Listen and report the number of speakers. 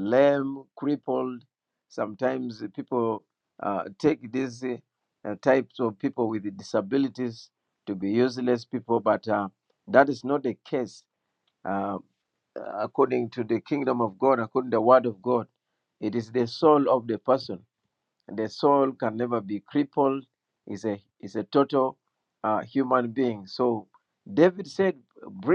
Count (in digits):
1